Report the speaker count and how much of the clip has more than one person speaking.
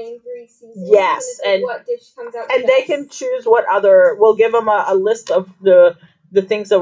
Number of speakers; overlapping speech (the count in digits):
2, about 20%